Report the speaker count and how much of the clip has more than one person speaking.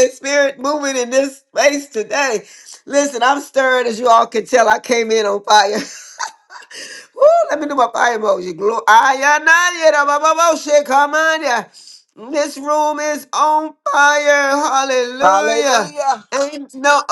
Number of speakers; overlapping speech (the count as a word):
two, about 2%